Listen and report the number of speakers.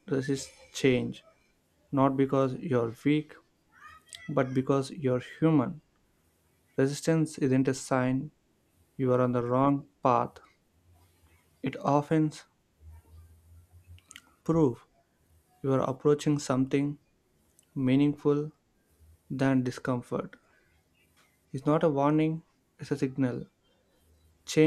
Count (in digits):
1